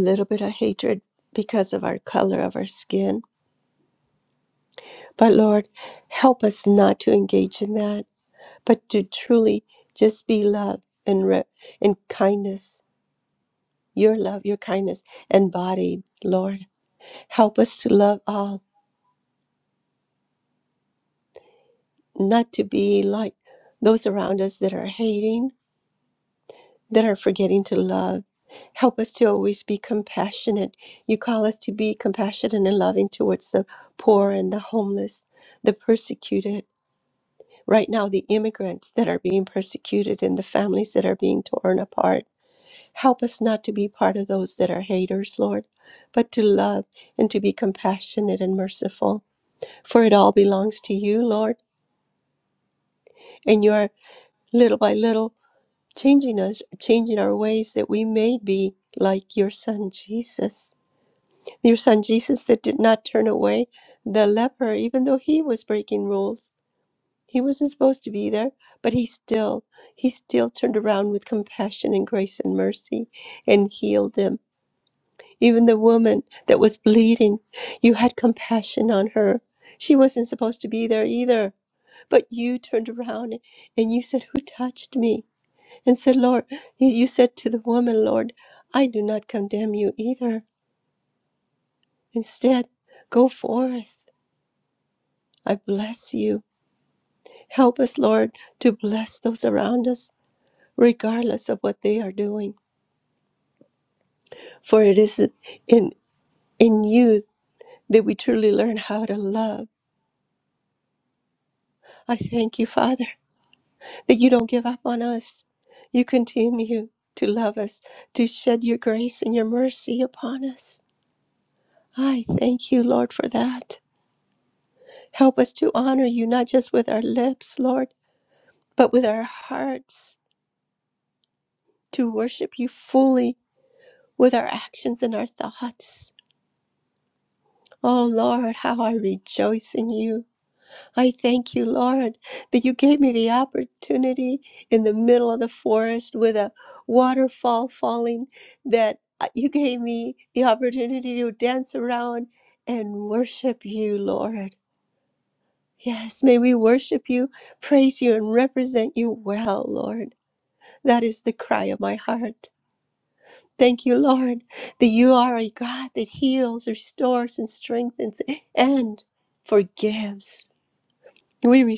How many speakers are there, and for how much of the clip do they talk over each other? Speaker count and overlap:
1, no overlap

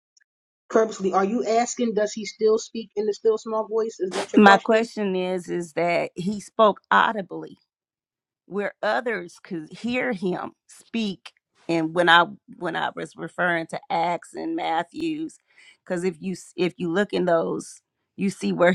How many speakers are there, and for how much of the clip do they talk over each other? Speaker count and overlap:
2, about 3%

